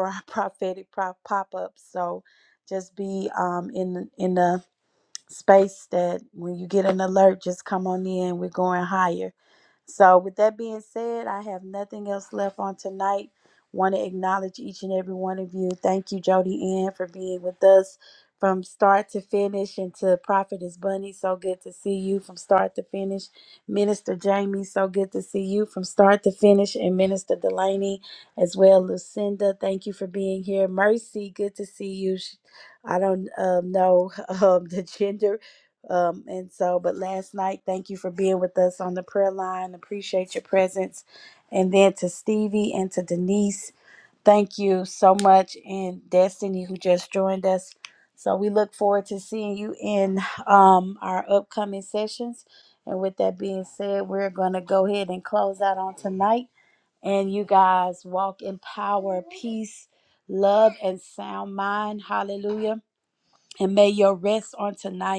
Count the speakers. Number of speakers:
1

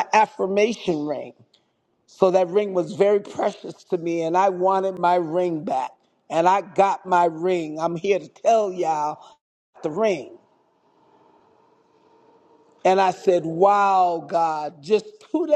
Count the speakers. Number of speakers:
1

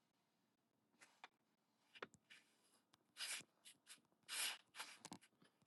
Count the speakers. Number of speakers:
0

